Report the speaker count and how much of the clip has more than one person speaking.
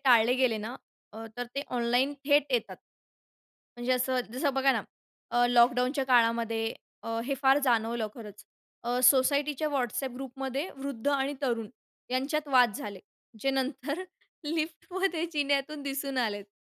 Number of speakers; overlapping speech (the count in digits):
1, no overlap